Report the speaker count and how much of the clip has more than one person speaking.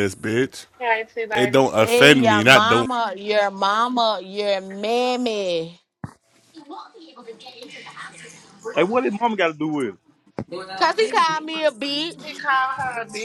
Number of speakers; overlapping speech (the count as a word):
four, about 12%